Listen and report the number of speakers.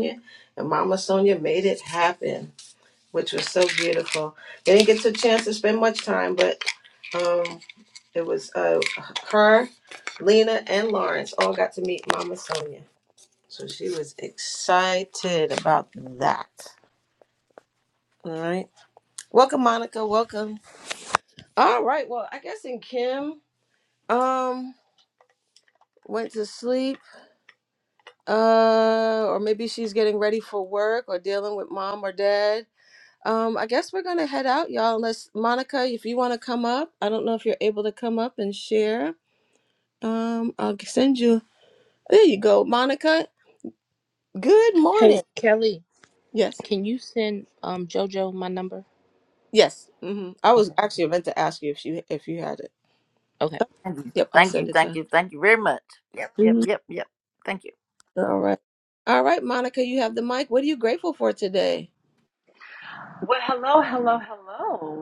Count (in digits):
4